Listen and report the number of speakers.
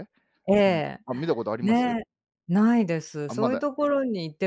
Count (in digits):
2